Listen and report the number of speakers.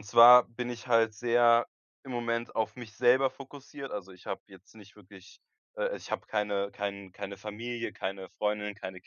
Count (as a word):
one